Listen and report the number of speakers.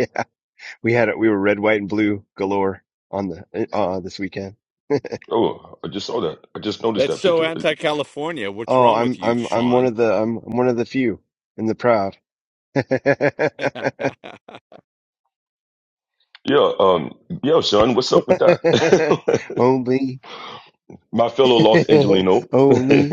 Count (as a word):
three